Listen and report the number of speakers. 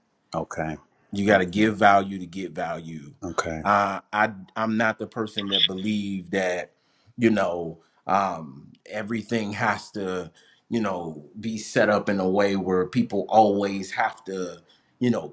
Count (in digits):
2